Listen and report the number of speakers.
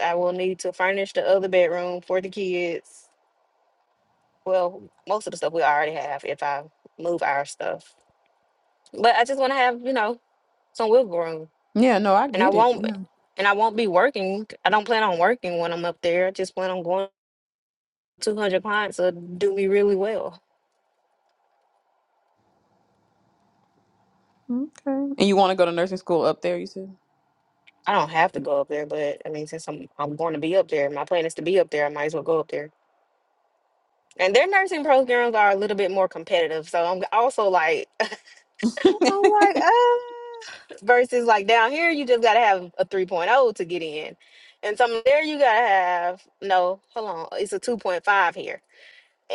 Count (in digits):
2